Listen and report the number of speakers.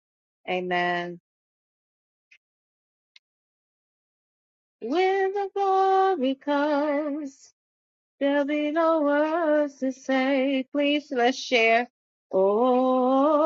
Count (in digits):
1